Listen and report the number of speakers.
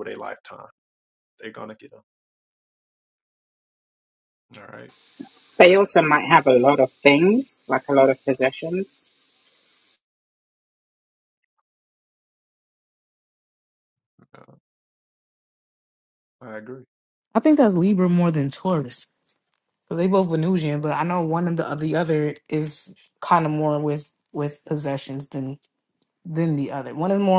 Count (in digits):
3